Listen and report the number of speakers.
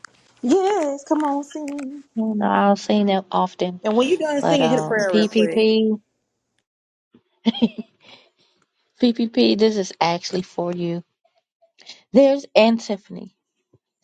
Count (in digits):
2